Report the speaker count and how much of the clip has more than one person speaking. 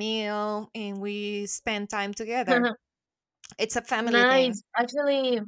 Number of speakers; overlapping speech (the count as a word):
two, about 9%